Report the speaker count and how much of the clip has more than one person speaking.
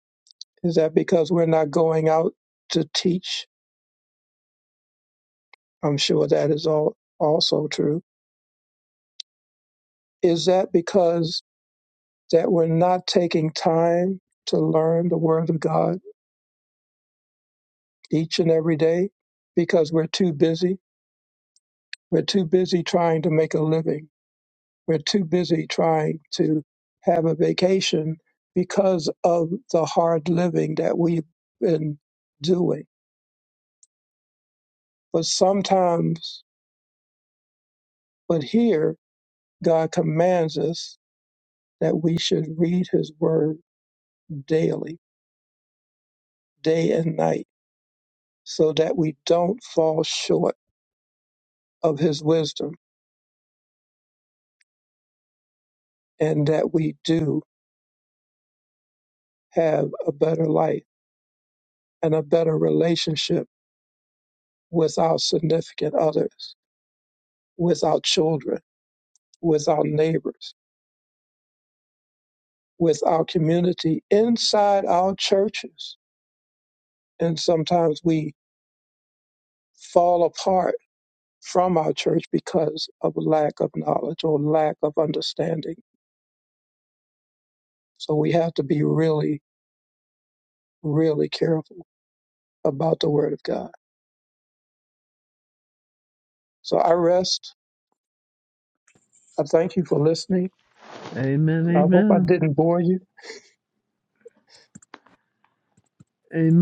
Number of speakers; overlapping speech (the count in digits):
2, under 1%